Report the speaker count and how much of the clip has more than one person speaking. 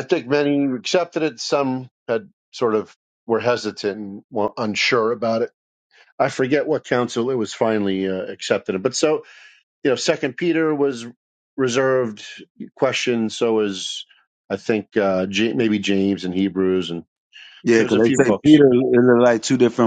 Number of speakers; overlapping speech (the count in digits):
2, about 4%